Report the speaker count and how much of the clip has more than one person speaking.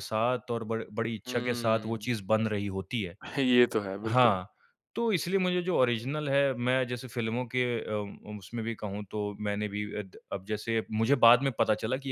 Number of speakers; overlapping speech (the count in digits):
2, about 9%